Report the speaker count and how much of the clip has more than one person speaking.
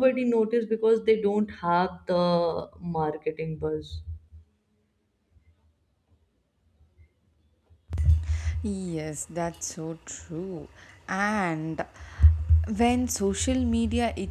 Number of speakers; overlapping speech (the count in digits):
2, no overlap